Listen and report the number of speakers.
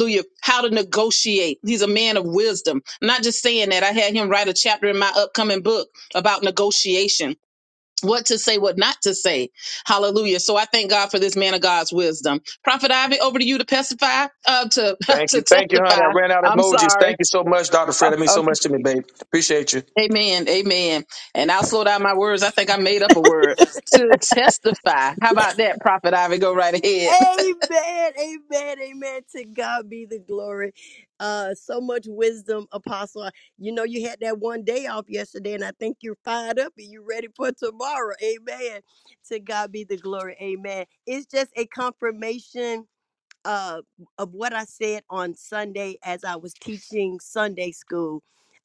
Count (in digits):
3